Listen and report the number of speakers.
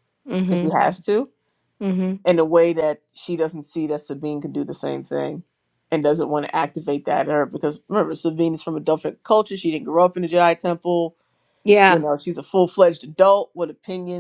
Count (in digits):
2